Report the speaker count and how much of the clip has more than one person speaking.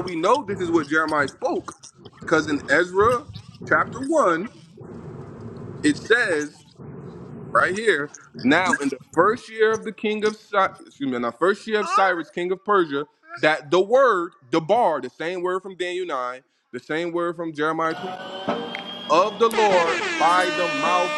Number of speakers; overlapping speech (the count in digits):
1, no overlap